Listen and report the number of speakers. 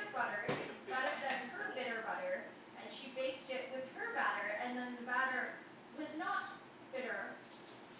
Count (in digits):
1